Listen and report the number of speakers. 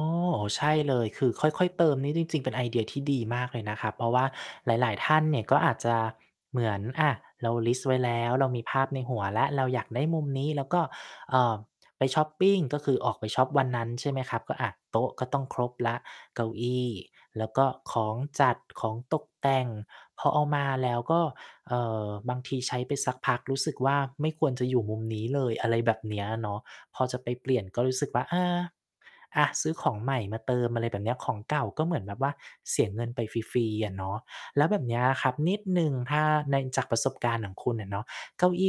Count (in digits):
1